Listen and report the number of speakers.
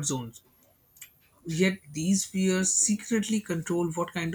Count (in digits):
1